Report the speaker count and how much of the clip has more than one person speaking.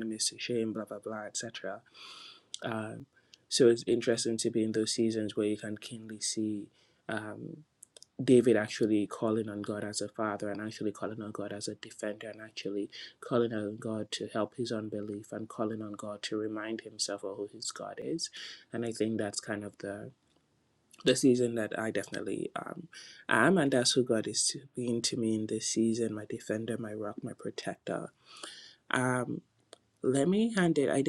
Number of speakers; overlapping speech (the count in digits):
1, no overlap